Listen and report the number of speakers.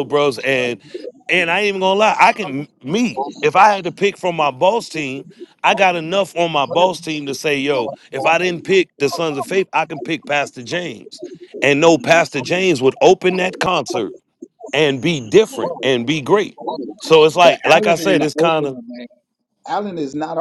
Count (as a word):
two